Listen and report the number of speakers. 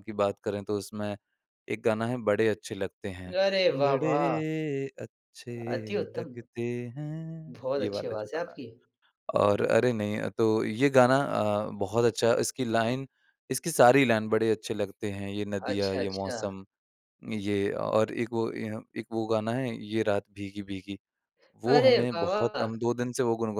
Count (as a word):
two